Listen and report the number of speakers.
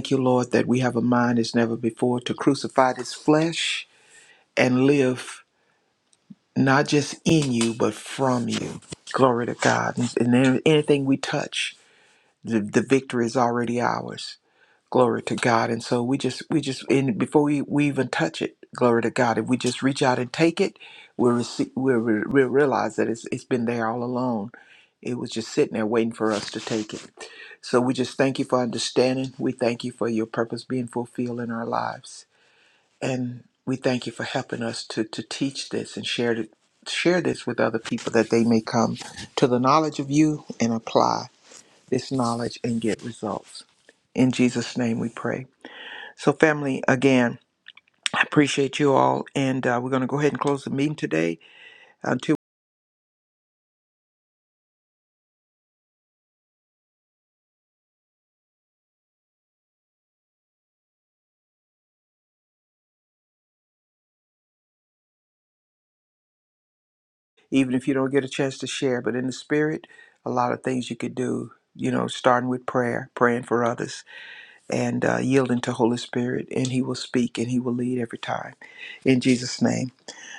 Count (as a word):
one